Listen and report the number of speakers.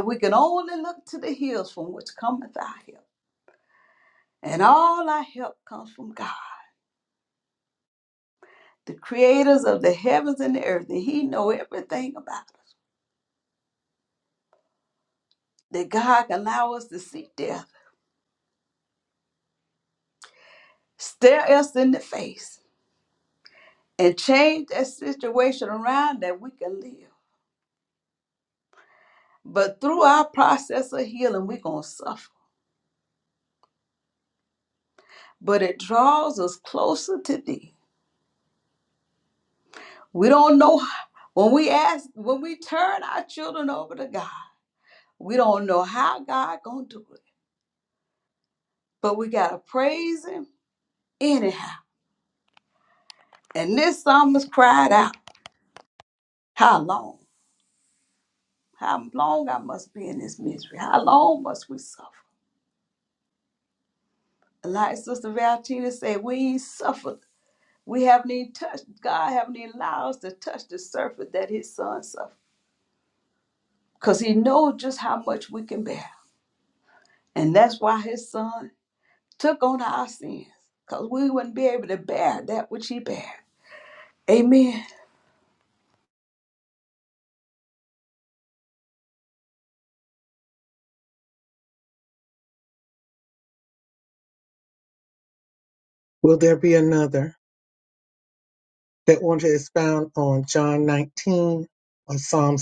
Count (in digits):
2